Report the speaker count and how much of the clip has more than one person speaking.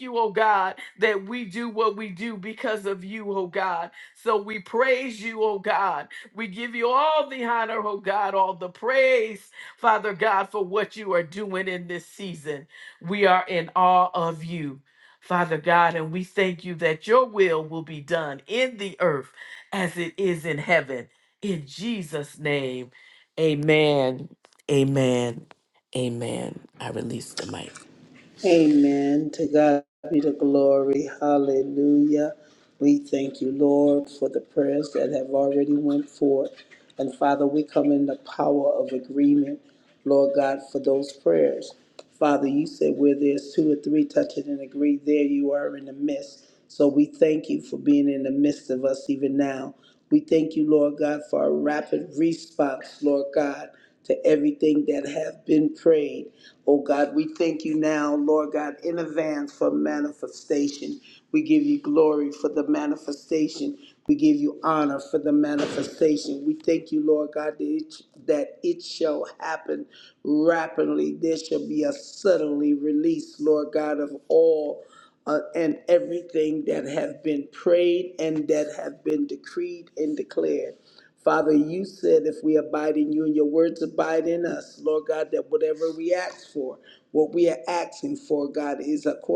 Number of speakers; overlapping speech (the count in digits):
2, no overlap